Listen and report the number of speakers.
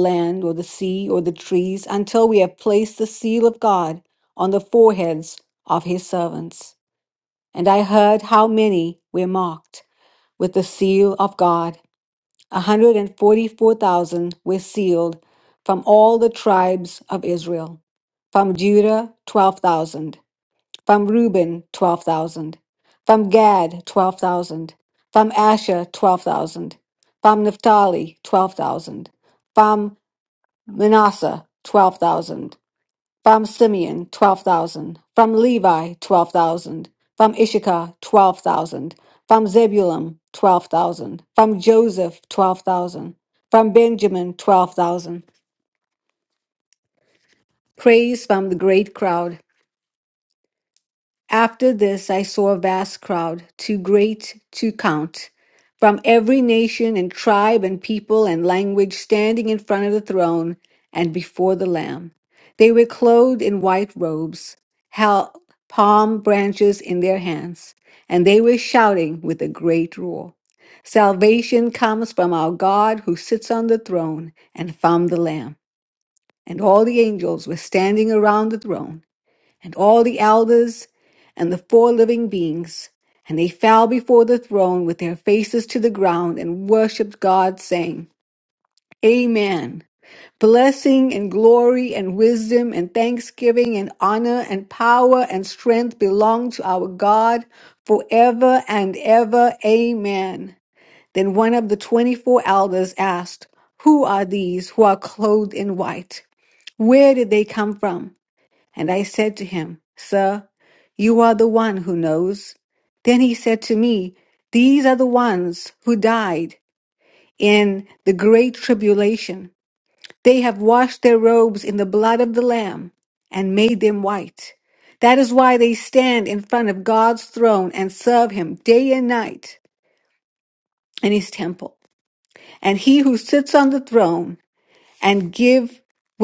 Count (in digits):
1